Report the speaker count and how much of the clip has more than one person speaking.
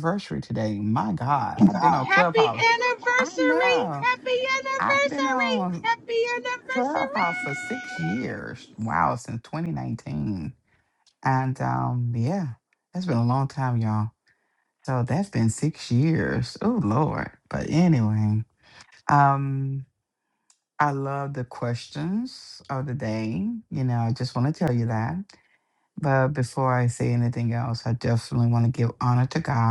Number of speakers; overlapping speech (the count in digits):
2, about 10%